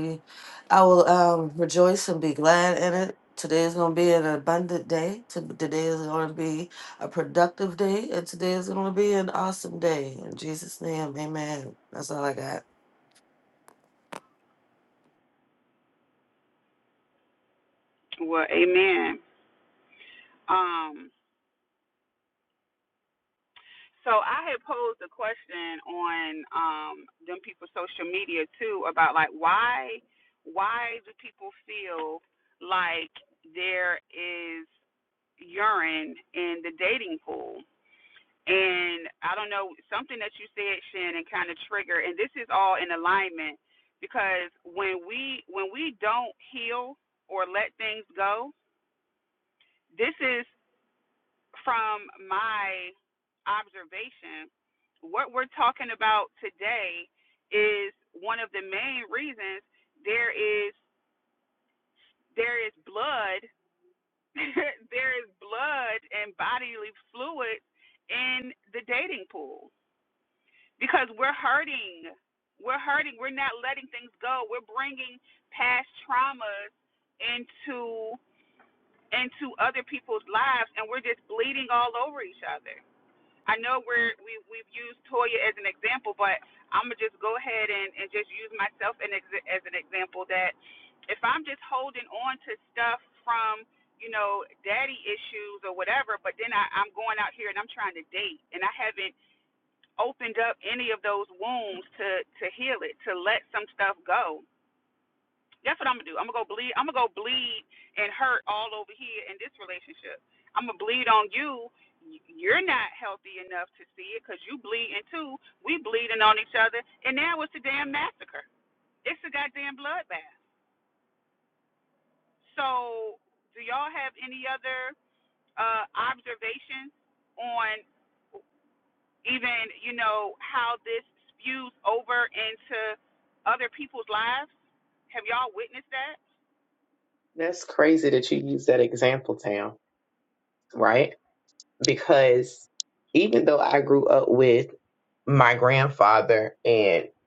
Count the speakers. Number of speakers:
3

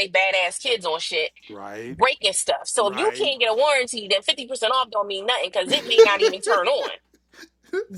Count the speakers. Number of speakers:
2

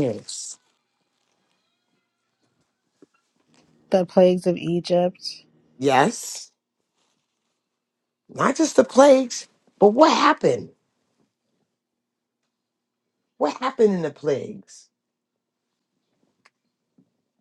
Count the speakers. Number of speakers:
2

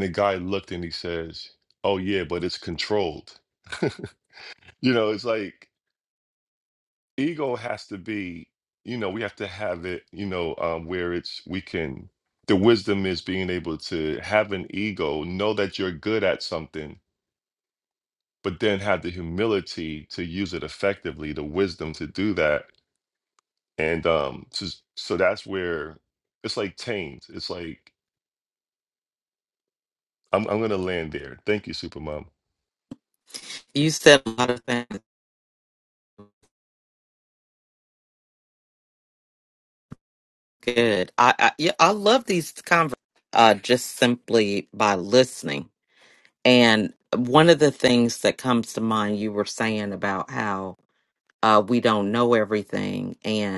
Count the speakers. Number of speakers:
2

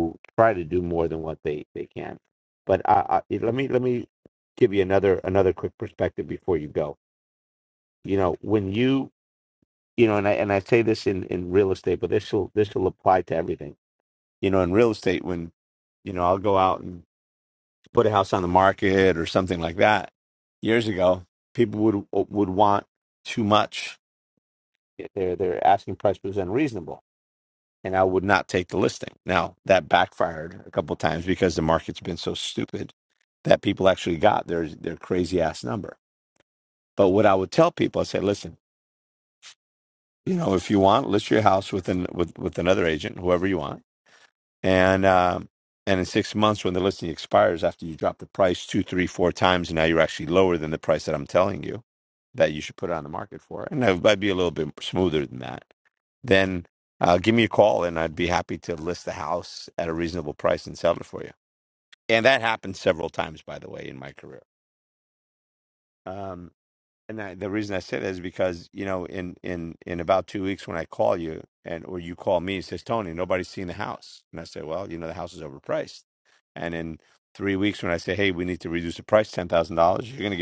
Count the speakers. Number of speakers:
1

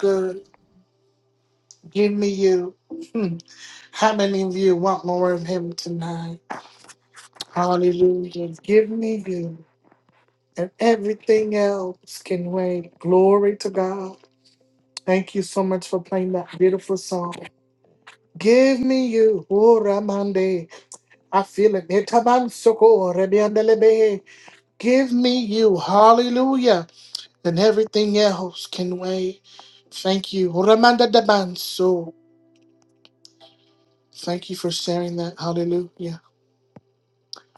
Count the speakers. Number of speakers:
1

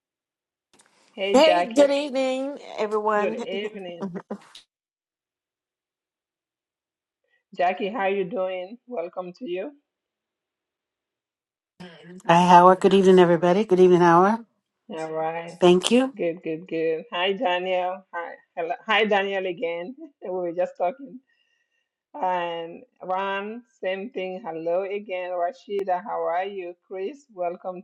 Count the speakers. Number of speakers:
3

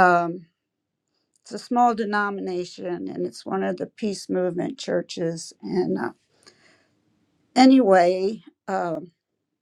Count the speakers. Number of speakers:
1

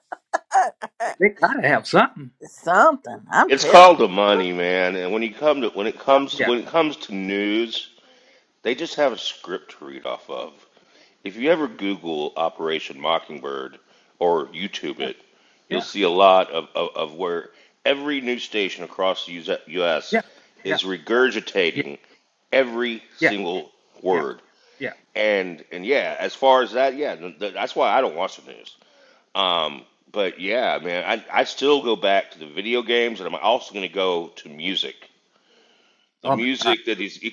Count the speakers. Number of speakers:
3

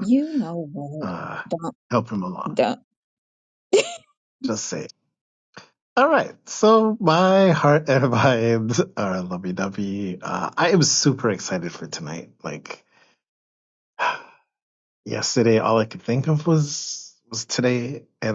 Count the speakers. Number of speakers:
2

